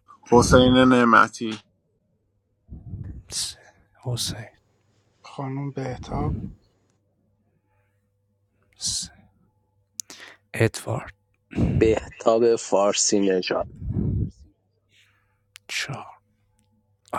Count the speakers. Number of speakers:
4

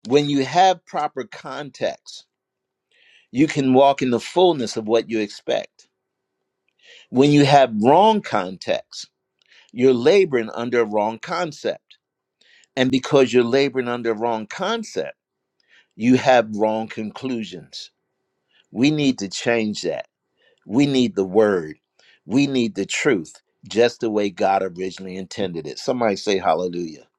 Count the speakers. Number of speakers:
1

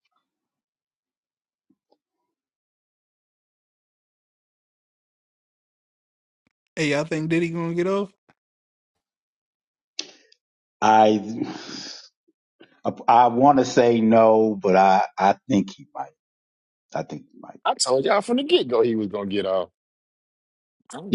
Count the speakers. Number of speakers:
3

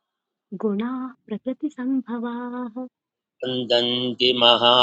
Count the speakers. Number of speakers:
2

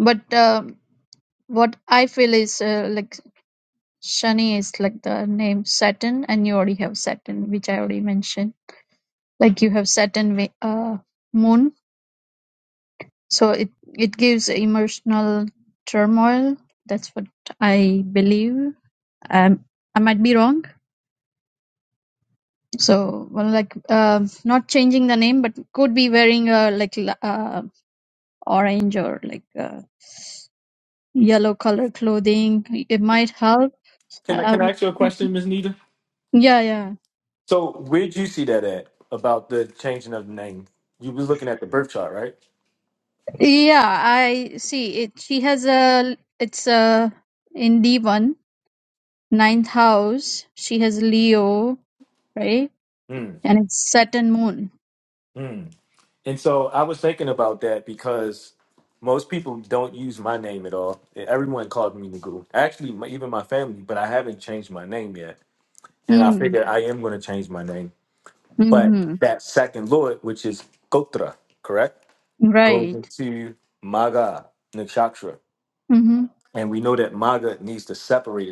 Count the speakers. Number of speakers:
2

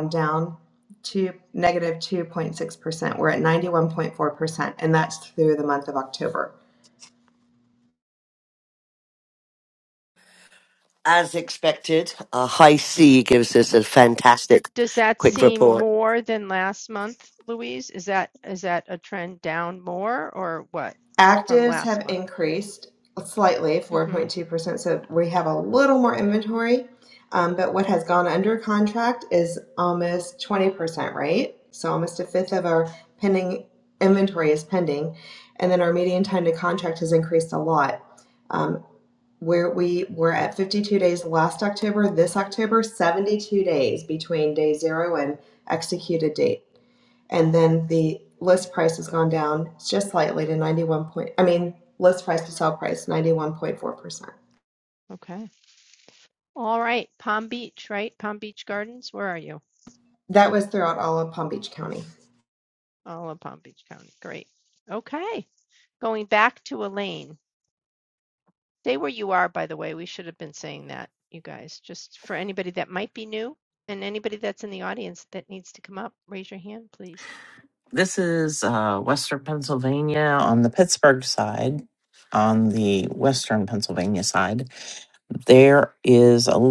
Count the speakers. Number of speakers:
4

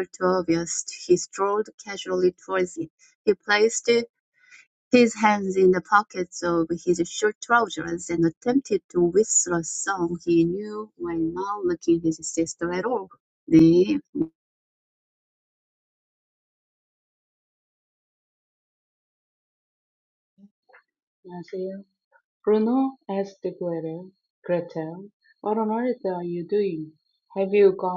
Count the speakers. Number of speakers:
2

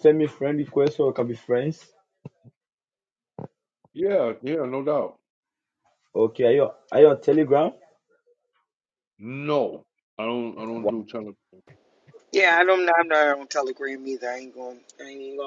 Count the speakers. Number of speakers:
3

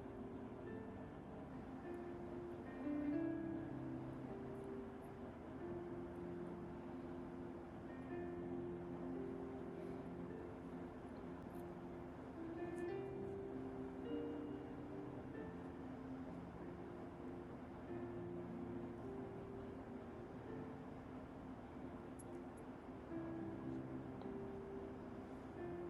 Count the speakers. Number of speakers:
0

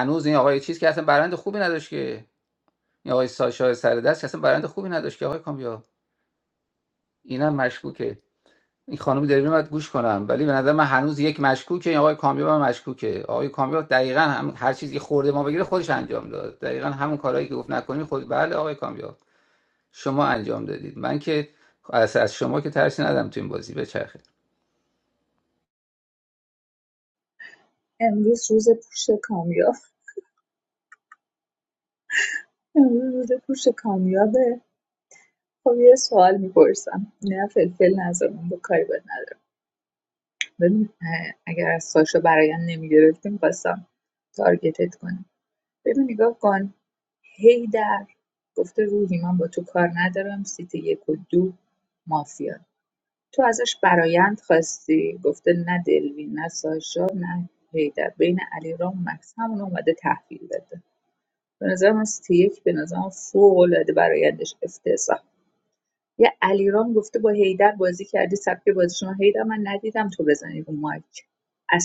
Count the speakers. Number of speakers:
2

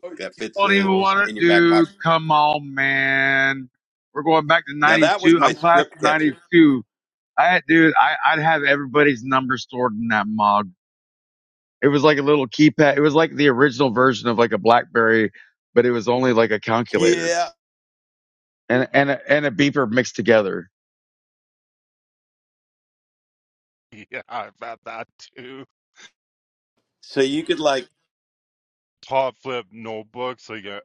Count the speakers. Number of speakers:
3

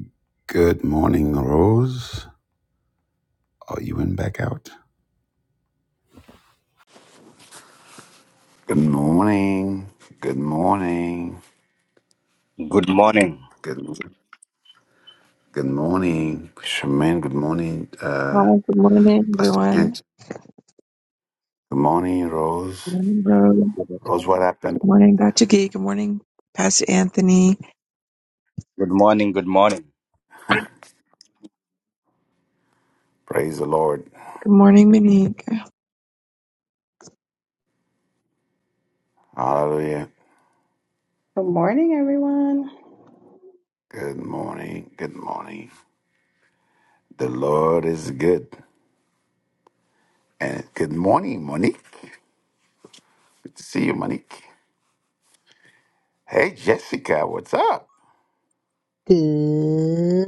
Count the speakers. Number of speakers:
5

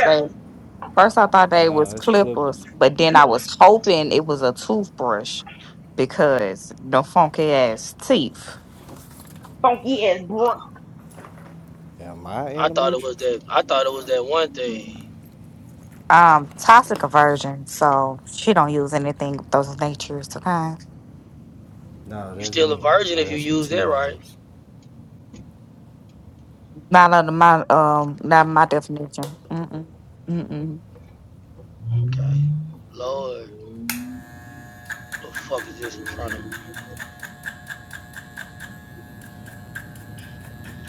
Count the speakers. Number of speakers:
4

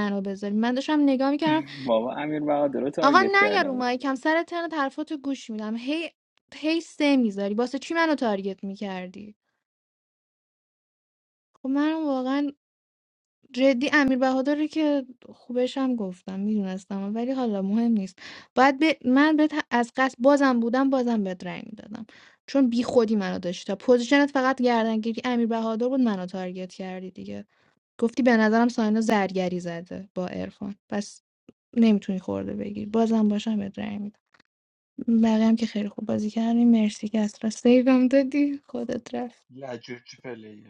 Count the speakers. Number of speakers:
3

